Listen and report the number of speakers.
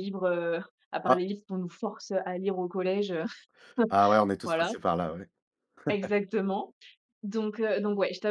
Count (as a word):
two